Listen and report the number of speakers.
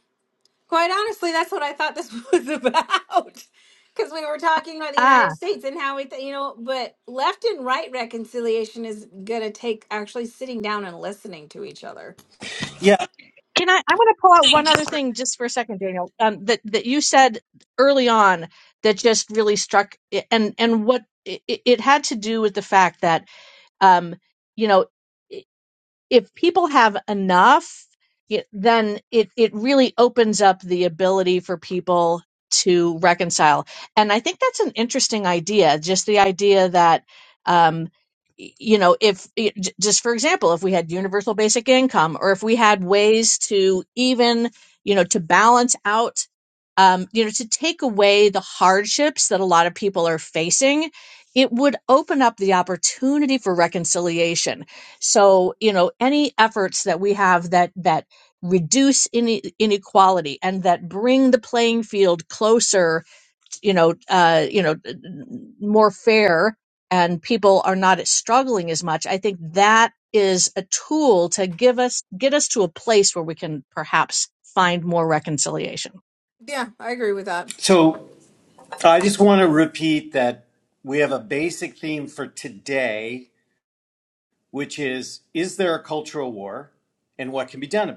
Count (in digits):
3